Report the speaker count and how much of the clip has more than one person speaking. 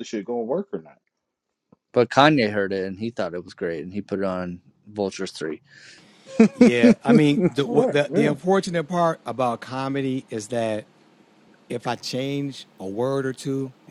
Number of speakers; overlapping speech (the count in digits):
3, about 5%